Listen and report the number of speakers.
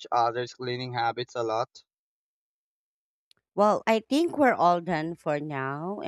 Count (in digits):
2